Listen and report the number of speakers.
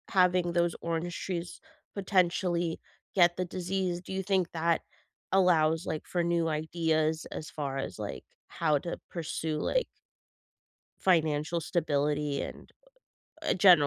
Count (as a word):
one